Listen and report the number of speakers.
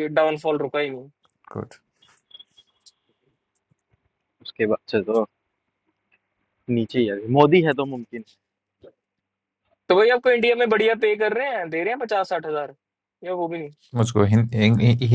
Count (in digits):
3